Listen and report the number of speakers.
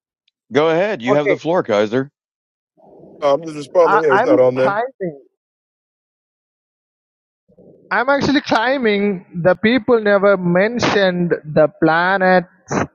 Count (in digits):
3